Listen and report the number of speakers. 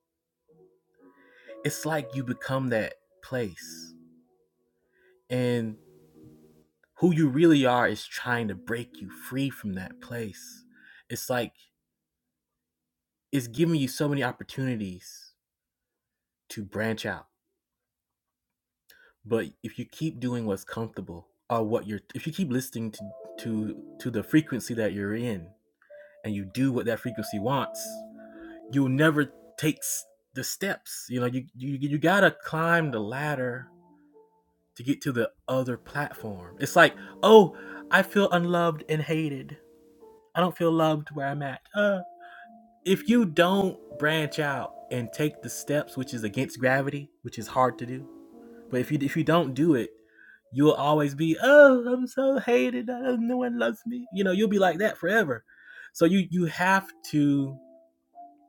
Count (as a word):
one